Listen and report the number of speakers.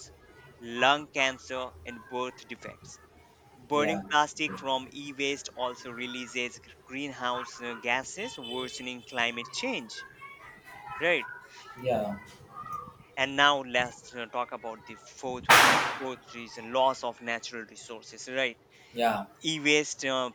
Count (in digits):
2